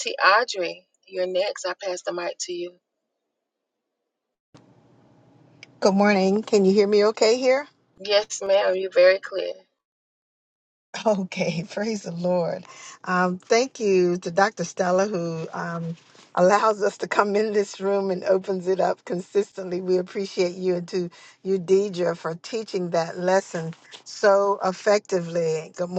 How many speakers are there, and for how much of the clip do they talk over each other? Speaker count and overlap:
2, no overlap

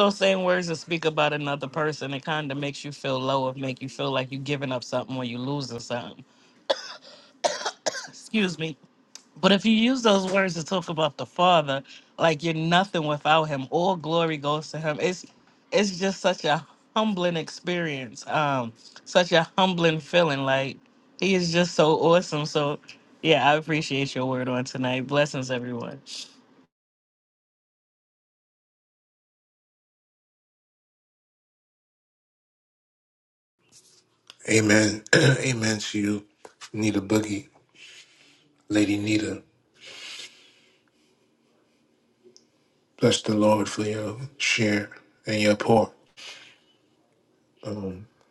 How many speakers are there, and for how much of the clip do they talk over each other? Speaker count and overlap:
2, no overlap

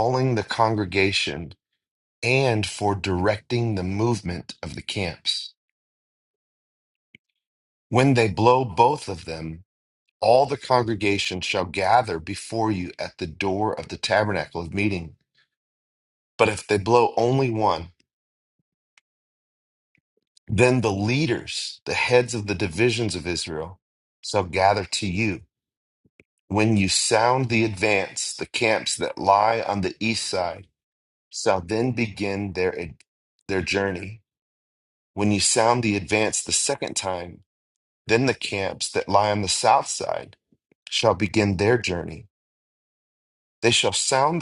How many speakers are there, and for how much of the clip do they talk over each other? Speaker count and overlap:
1, no overlap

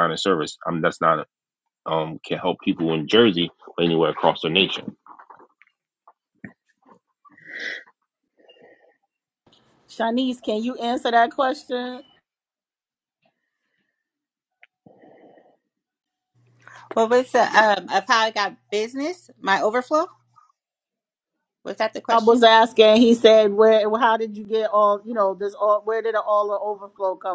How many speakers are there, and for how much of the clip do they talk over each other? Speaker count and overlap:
3, about 1%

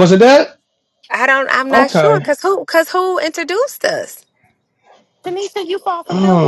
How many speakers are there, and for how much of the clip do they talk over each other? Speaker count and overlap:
3, about 15%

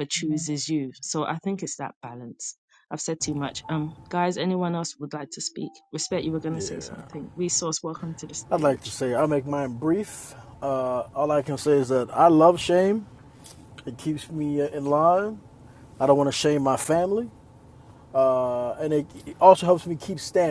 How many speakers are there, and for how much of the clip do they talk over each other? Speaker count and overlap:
2, about 4%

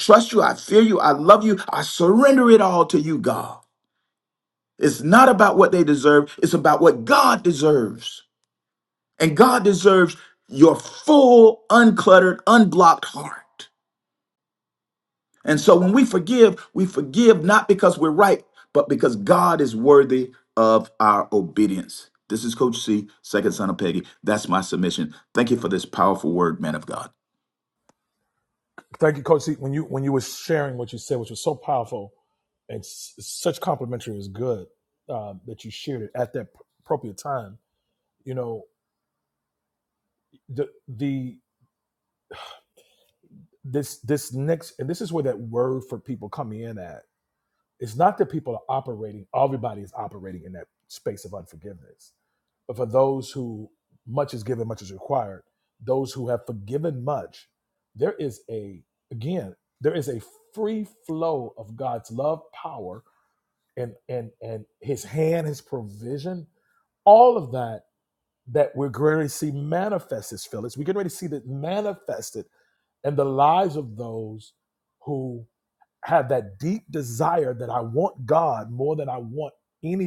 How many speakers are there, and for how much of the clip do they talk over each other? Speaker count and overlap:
2, no overlap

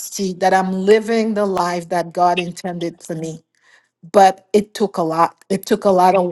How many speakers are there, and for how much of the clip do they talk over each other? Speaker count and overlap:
1, no overlap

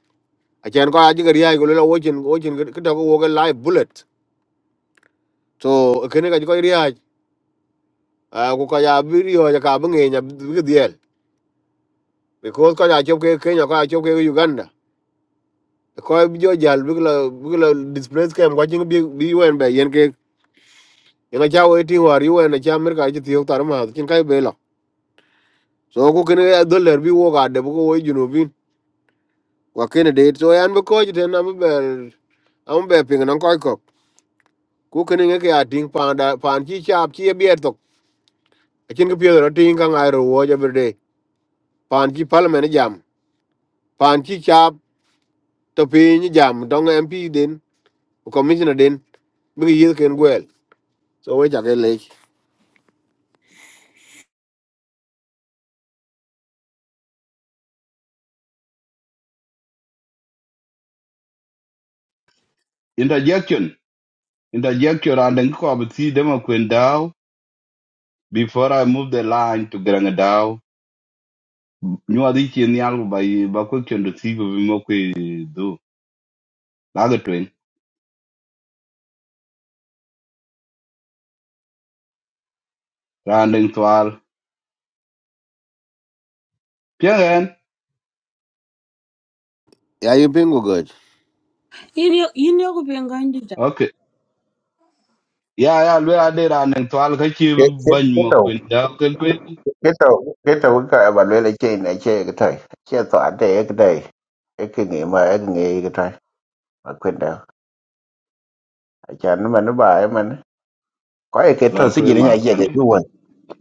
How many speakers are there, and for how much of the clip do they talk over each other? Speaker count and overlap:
4, about 1%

